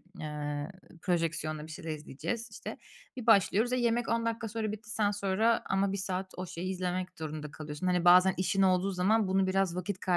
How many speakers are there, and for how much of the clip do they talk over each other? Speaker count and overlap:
one, no overlap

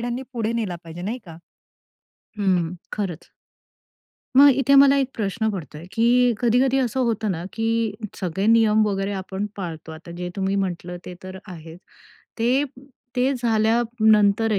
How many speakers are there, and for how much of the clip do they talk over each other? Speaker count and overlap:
two, no overlap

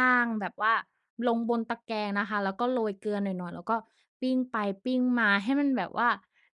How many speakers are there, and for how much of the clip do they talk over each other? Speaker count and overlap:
one, no overlap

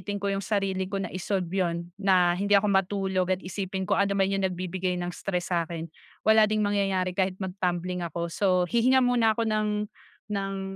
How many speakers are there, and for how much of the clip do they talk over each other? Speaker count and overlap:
one, no overlap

